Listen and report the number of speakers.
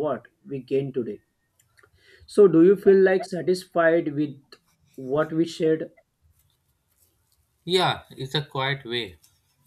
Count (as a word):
two